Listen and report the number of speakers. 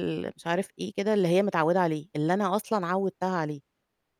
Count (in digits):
1